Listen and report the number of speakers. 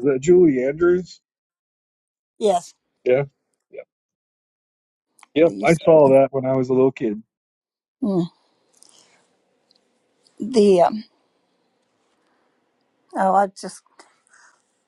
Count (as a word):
two